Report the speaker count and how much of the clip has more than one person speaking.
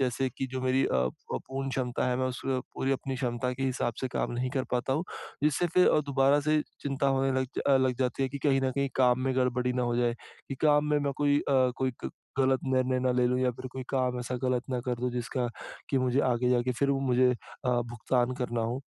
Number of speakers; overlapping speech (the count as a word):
one, no overlap